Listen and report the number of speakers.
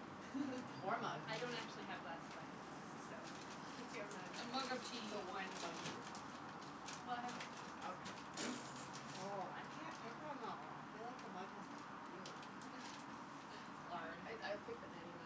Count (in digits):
3